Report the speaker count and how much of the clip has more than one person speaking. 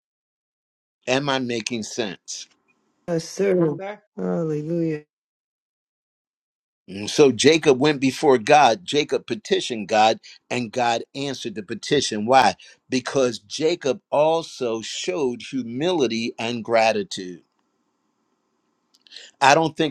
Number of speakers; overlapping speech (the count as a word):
two, no overlap